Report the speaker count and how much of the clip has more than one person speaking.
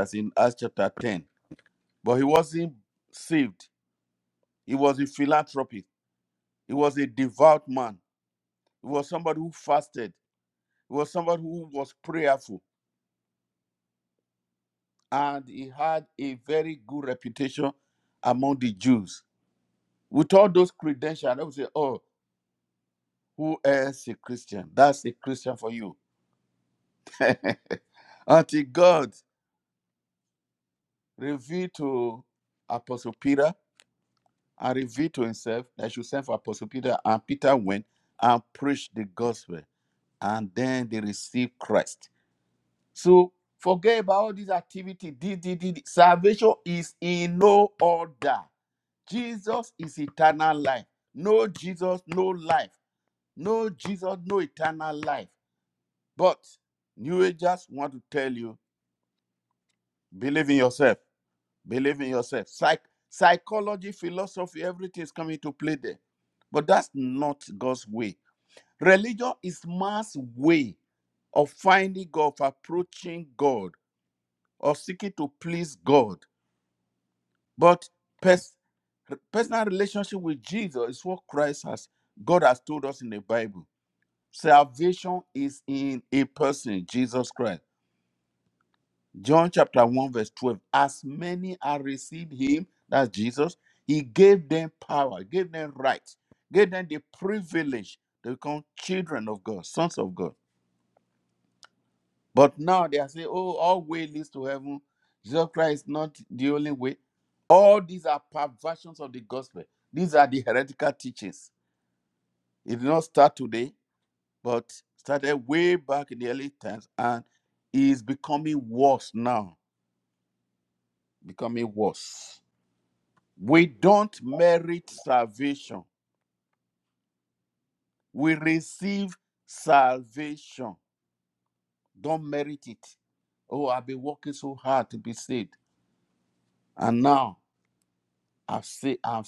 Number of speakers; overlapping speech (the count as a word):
one, no overlap